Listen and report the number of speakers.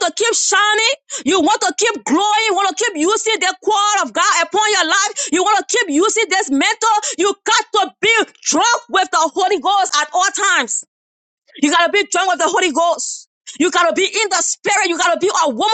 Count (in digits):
1